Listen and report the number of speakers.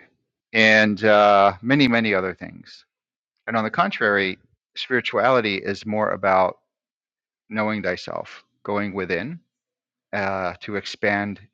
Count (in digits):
1